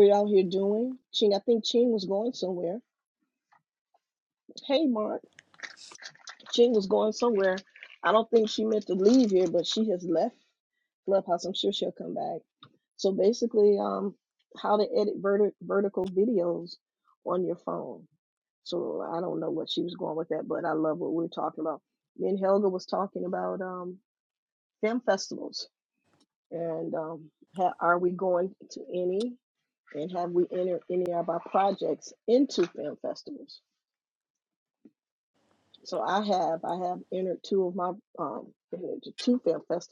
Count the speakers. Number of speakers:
one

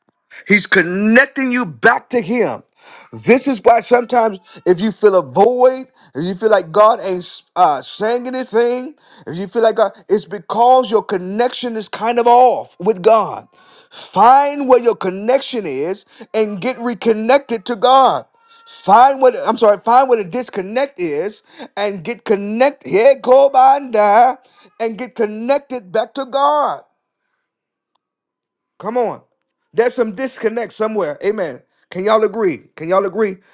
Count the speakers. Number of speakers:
one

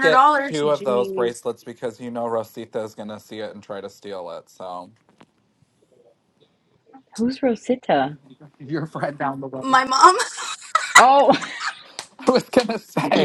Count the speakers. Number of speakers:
three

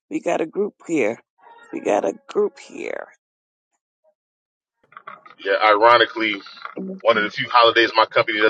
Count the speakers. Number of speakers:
two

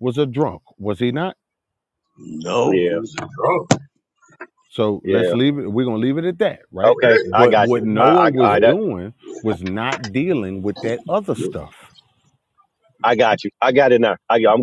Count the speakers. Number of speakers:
three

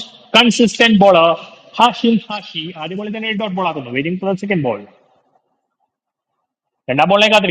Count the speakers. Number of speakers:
one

